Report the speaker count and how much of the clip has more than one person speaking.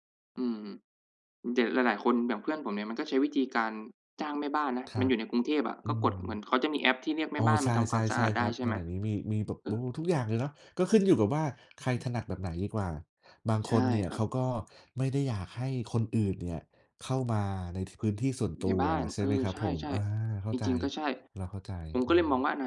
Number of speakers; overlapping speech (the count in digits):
2, about 17%